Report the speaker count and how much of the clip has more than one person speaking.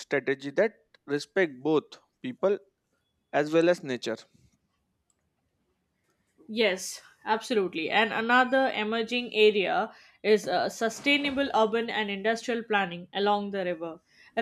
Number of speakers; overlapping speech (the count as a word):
two, no overlap